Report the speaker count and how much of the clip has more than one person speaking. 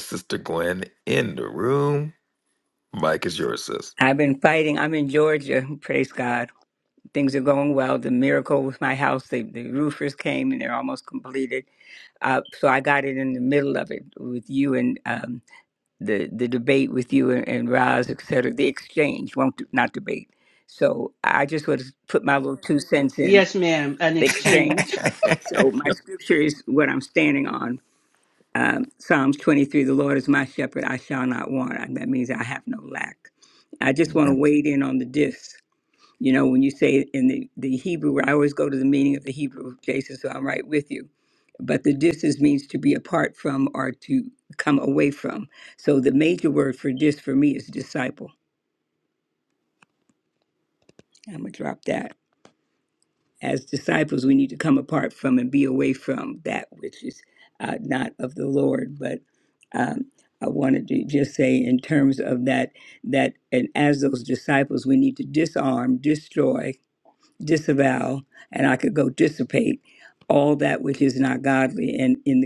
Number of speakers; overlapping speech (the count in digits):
3, about 1%